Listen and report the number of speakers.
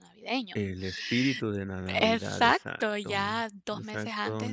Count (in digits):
2